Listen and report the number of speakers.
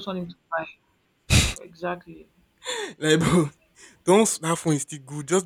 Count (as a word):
two